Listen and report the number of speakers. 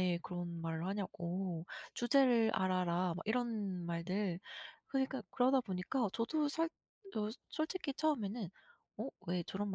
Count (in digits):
1